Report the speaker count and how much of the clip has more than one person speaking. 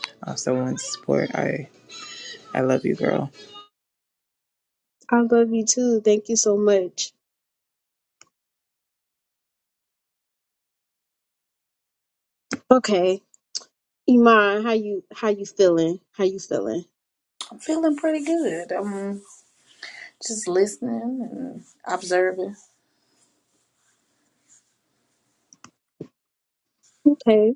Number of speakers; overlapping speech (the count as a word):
three, no overlap